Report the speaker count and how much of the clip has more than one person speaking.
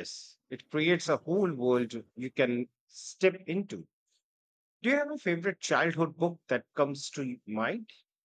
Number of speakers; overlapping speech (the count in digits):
1, no overlap